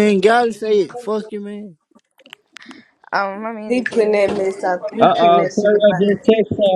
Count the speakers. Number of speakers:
four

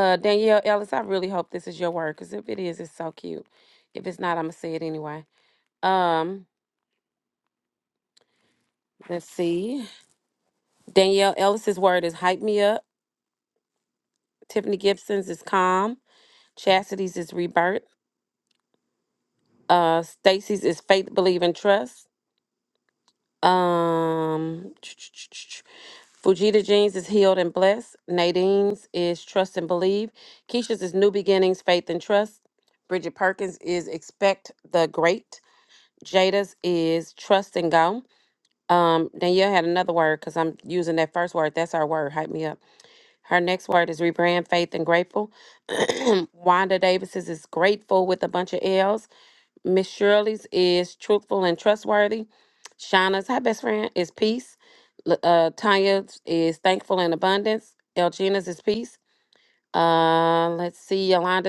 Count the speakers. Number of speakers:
one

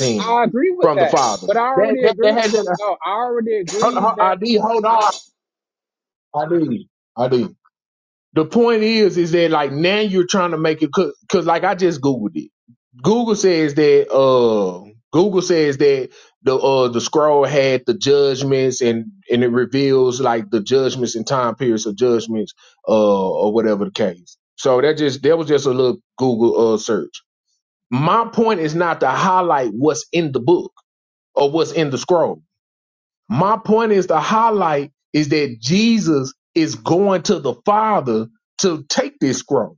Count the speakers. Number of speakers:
two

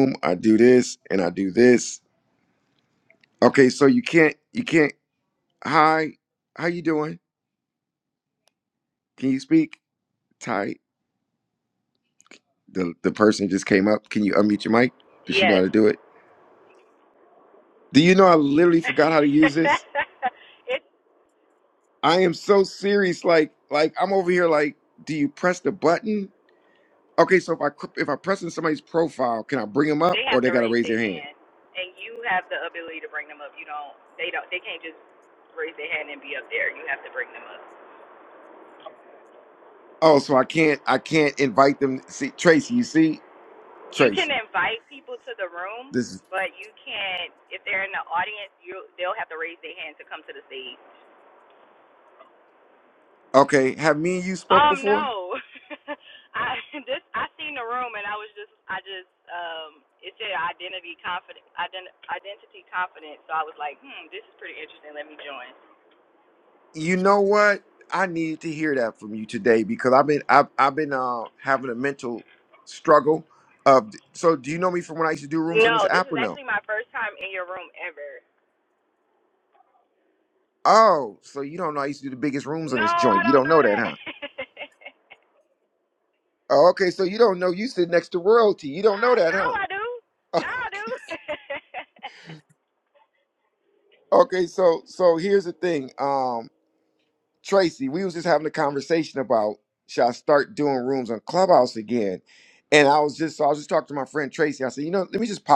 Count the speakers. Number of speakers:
two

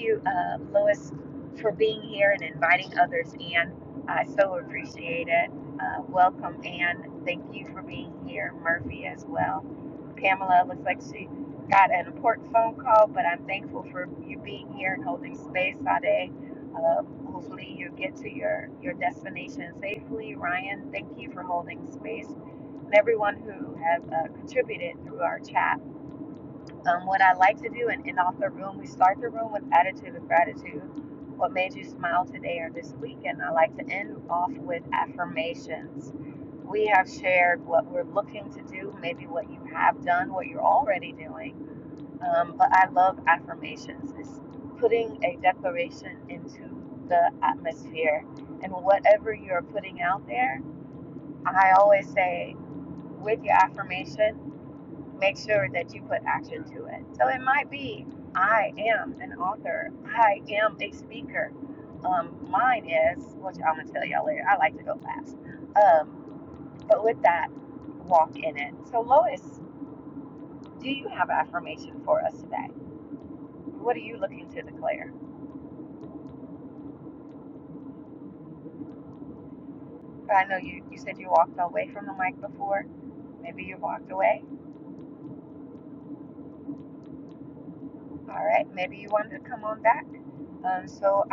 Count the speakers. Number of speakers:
one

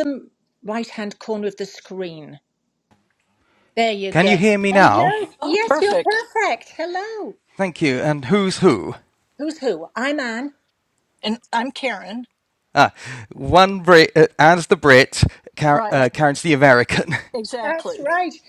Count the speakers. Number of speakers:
three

